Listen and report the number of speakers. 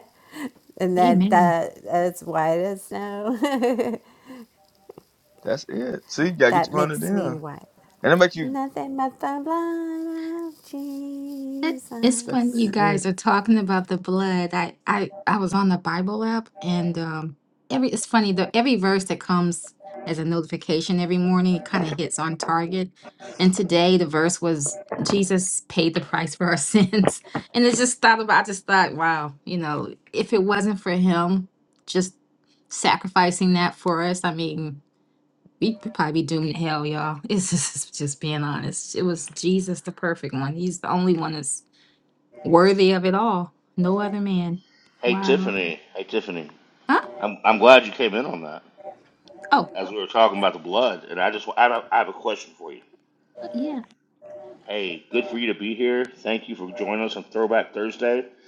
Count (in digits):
4